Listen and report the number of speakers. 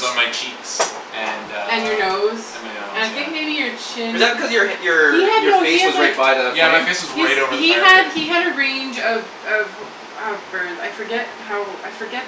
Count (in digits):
3